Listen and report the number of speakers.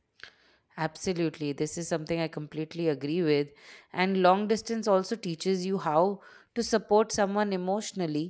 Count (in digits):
1